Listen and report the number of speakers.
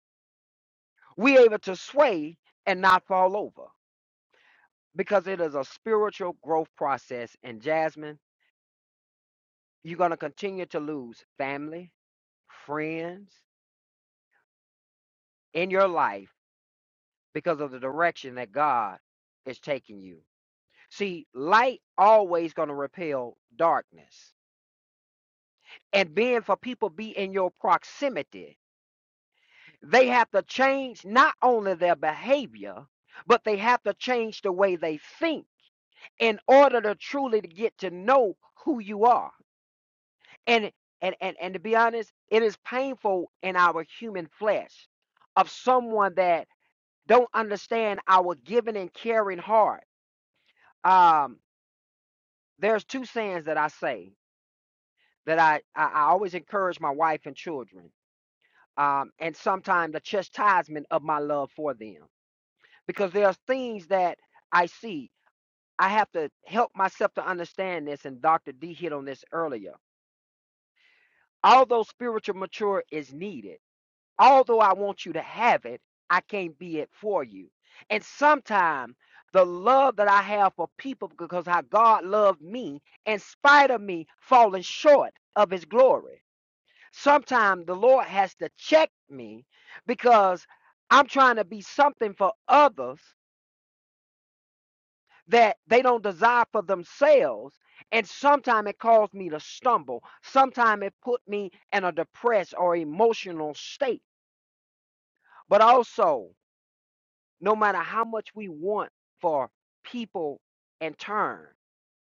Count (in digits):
1